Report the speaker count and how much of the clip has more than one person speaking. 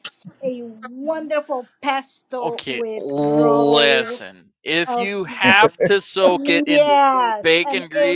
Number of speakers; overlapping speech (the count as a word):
two, about 30%